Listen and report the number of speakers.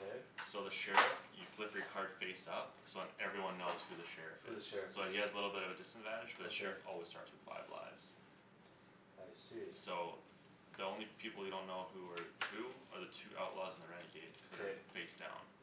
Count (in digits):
2